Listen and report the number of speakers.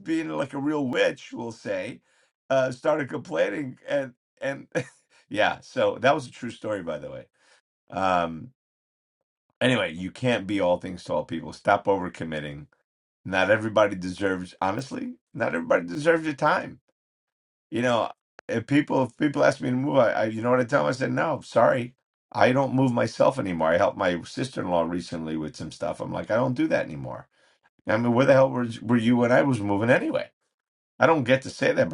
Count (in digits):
1